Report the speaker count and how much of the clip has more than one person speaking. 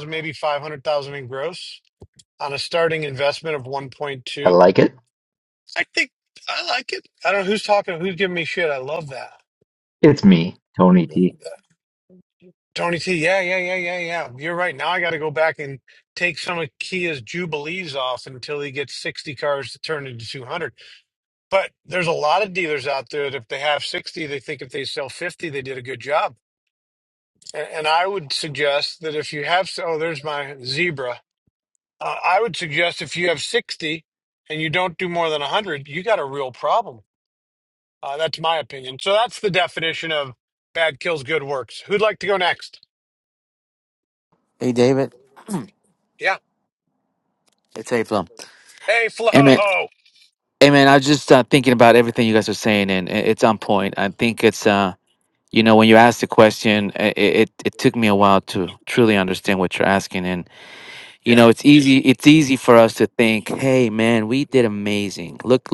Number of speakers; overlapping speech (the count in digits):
3, about 1%